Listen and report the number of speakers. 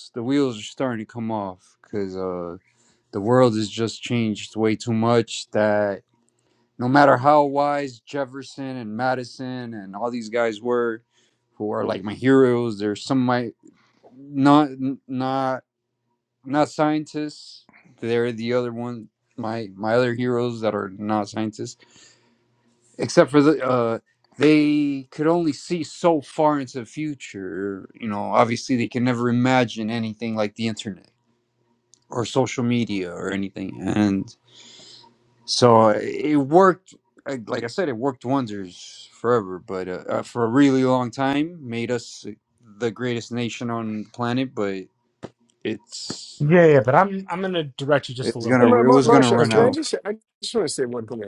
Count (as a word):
three